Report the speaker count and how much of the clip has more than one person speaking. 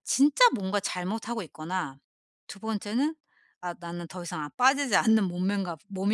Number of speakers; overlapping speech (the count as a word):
one, no overlap